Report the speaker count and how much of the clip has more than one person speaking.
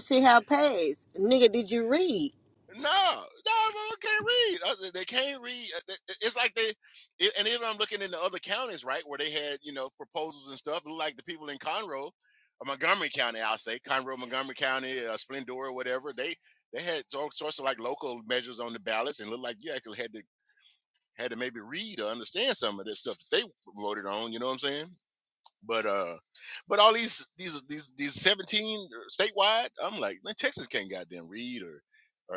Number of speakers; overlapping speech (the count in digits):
2, no overlap